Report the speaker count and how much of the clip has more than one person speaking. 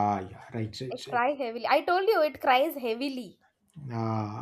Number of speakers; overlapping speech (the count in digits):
2, about 6%